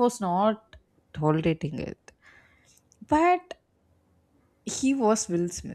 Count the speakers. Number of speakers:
1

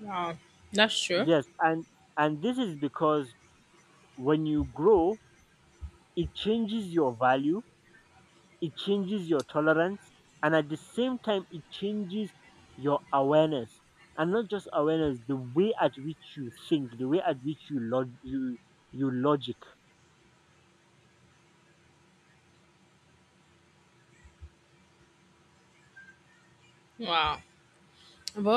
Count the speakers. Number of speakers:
2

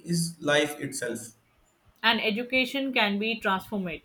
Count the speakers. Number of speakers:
2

